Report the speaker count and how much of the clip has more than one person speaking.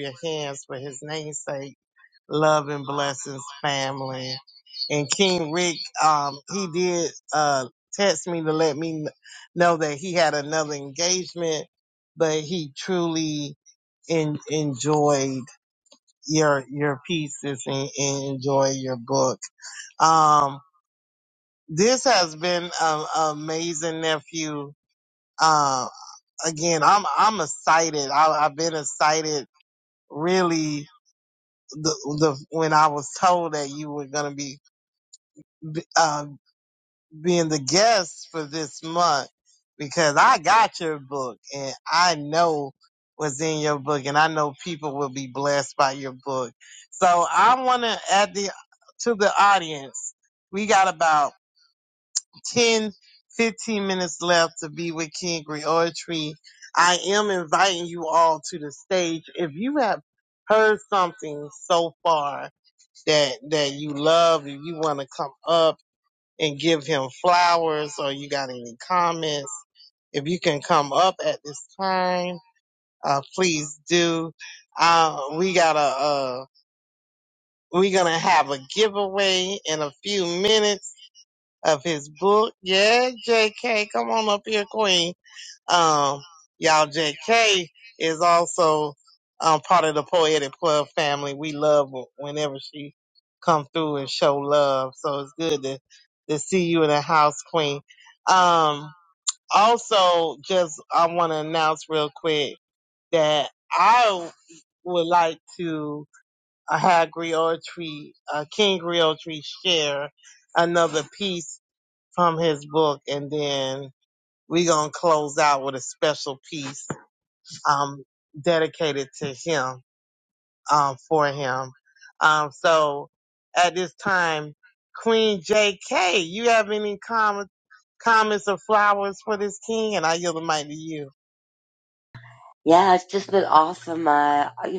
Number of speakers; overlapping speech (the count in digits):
2, no overlap